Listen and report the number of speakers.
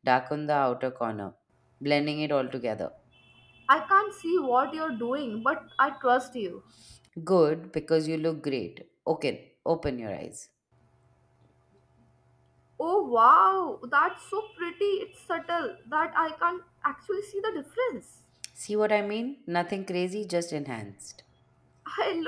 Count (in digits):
2